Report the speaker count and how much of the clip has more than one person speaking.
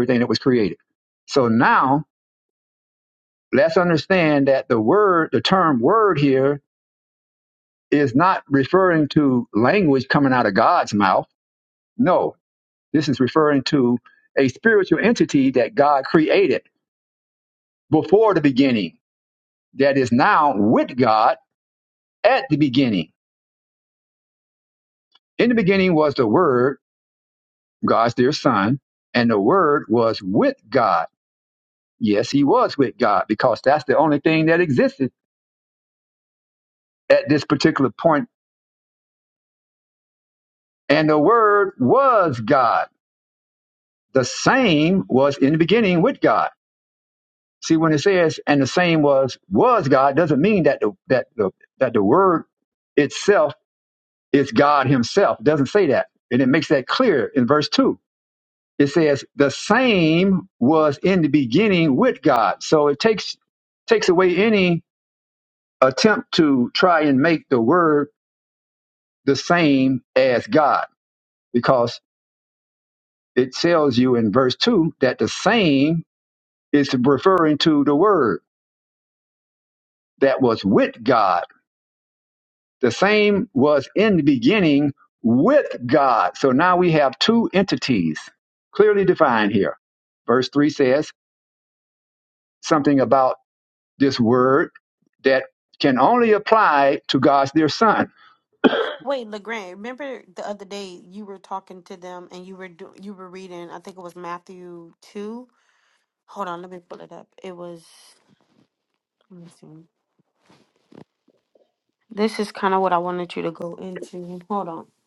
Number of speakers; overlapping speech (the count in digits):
2, no overlap